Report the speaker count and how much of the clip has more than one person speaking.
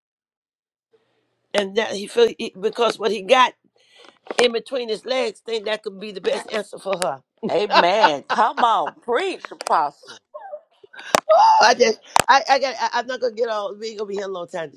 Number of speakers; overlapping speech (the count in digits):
2, no overlap